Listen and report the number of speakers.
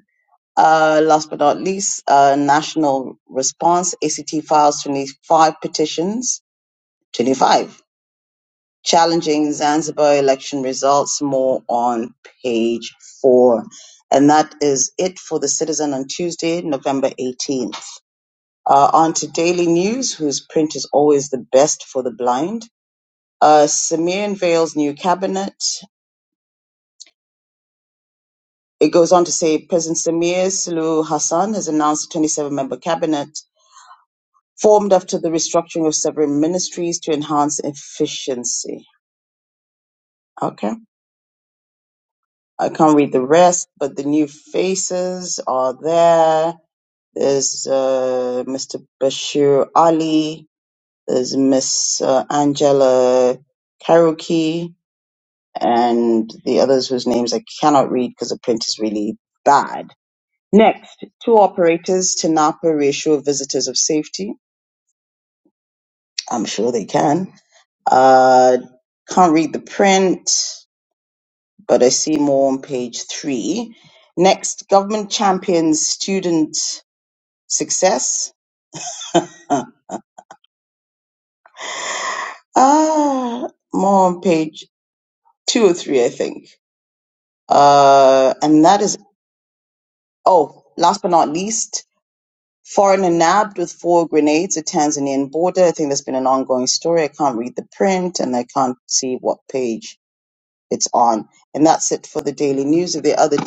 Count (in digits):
1